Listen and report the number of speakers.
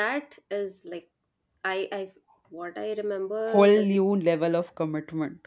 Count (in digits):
2